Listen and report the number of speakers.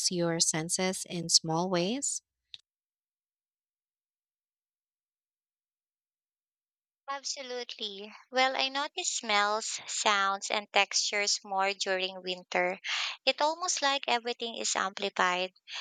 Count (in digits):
2